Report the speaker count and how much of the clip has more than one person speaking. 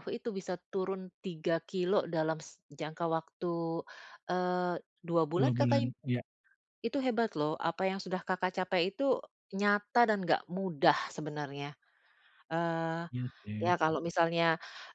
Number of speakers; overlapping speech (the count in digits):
2, about 4%